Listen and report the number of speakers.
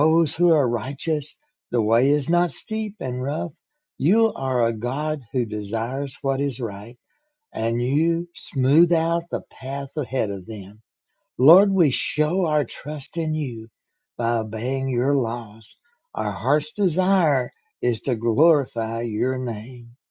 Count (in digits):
1